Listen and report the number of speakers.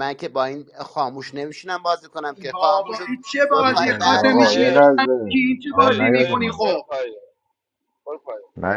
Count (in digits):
4